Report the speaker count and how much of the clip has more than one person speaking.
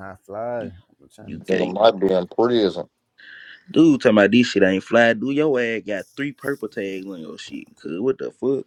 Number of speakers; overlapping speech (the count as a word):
three, about 6%